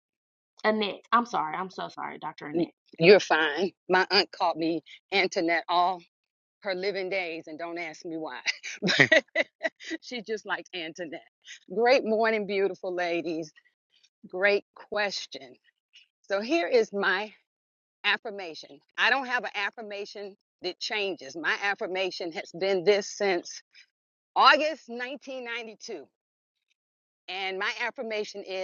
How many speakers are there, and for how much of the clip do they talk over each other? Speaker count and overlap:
two, about 1%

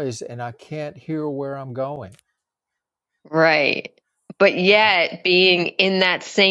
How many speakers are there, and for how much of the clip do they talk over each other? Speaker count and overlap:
two, about 3%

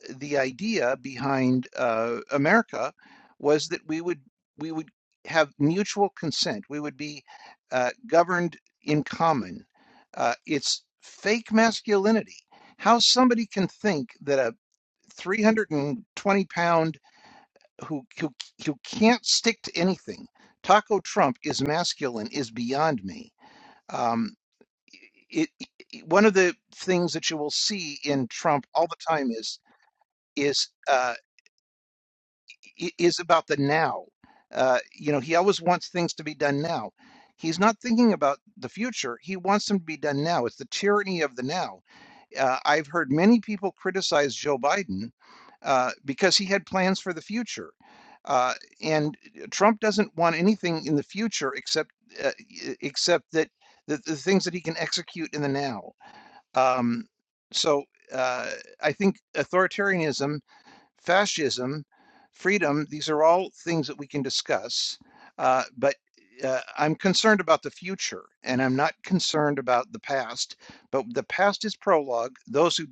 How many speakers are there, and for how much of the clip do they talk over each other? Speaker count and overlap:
one, no overlap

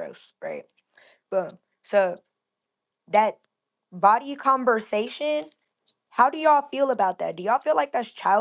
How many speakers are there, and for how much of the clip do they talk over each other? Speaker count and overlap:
one, no overlap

